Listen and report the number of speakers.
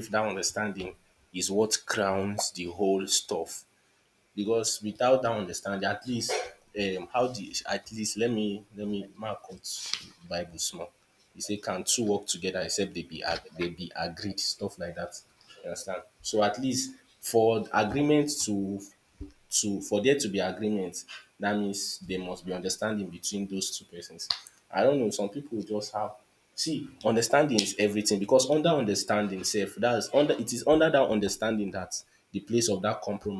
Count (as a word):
one